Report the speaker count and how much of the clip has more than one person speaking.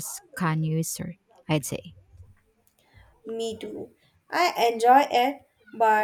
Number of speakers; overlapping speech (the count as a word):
two, no overlap